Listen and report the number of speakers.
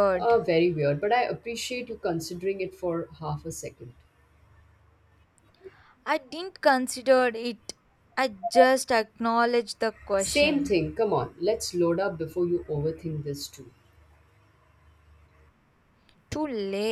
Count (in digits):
2